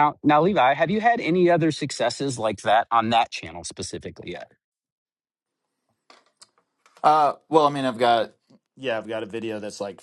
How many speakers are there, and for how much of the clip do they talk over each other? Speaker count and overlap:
two, no overlap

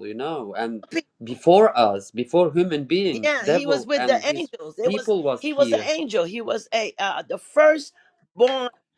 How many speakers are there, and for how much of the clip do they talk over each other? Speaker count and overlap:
two, about 22%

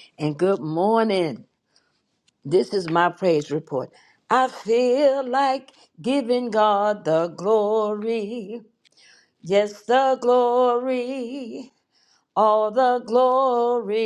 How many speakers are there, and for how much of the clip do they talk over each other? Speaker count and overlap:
one, no overlap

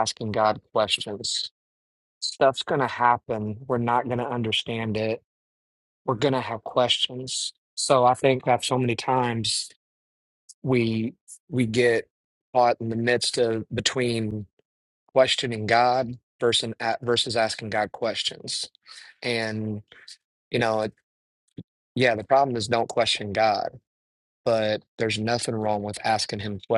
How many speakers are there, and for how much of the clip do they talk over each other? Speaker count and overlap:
one, no overlap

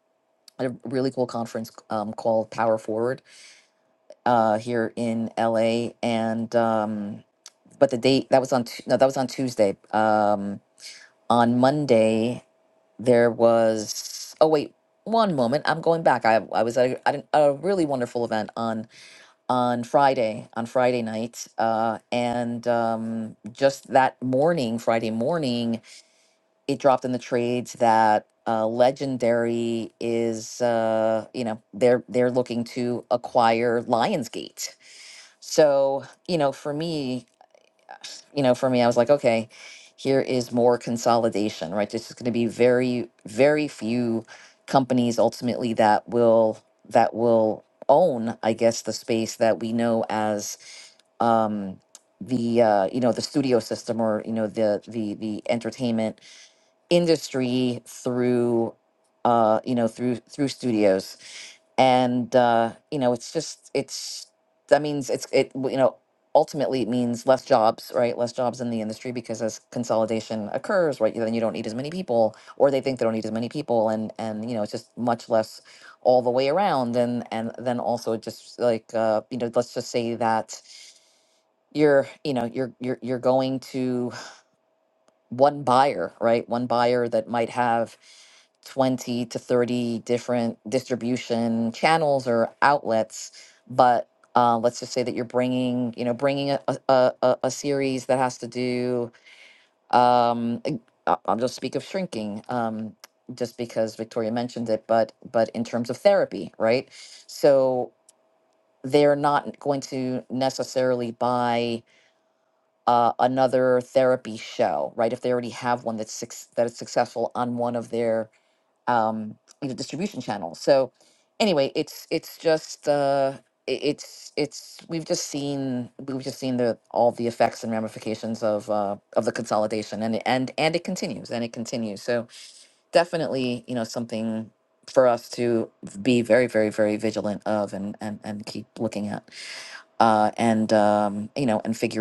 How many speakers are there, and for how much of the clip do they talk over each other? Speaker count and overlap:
one, no overlap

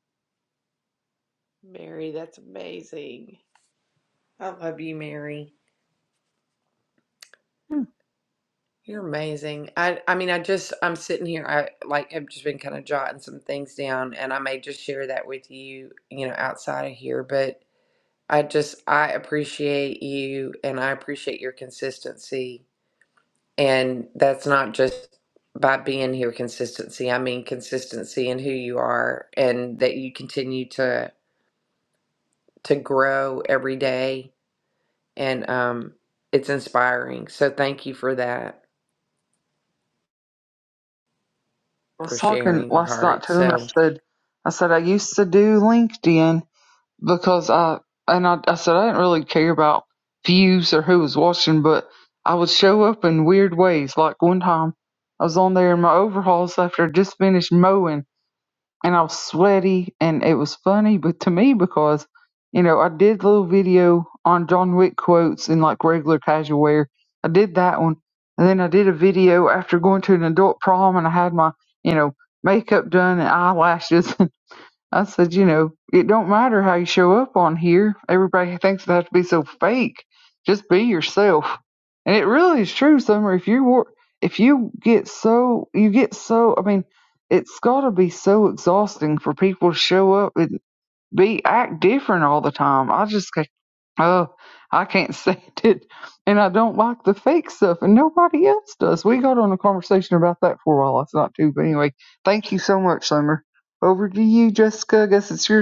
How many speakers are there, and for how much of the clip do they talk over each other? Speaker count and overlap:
two, about 2%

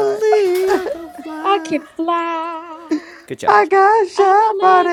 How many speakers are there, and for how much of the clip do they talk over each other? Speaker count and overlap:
three, about 34%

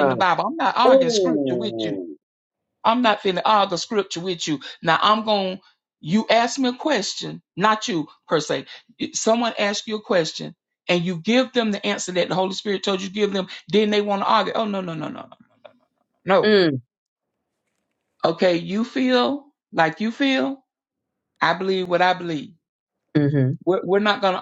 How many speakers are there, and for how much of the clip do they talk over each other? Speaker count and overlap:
two, about 6%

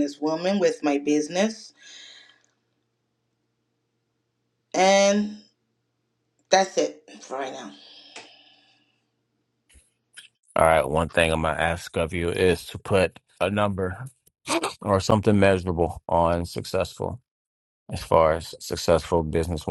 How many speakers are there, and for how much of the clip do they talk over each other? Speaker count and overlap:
two, no overlap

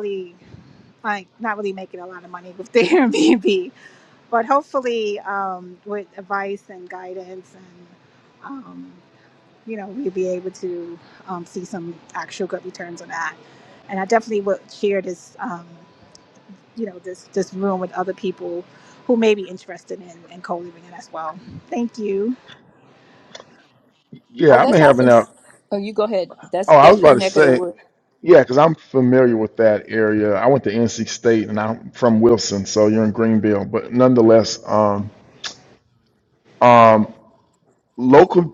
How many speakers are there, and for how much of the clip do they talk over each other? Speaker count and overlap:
three, about 4%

